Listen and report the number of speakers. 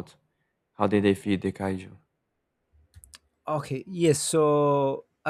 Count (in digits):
2